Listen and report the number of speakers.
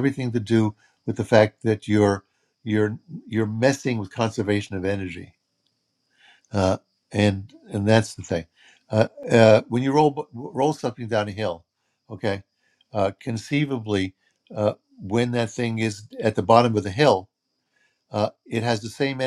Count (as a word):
one